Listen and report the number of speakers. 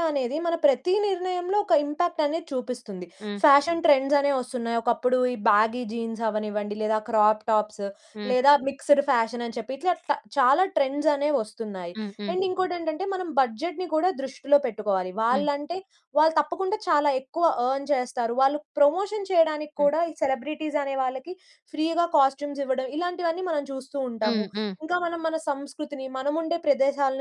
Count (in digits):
2